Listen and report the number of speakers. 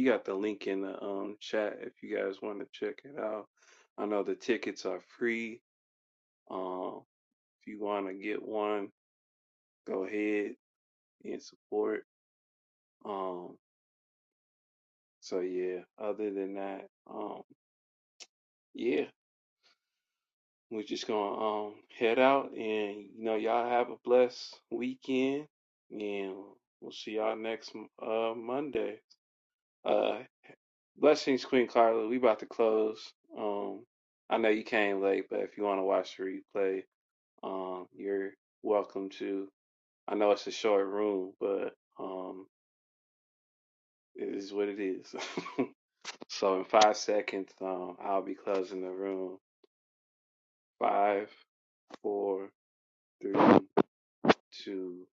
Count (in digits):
1